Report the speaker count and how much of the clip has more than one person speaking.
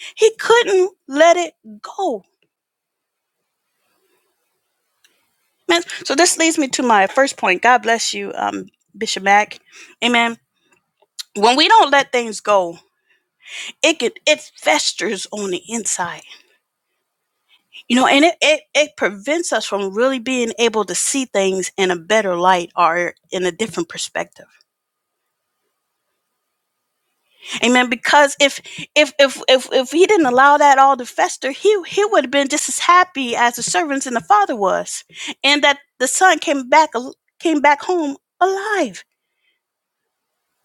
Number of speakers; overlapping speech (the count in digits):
1, no overlap